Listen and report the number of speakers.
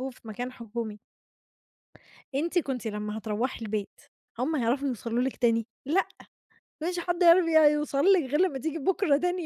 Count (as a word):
one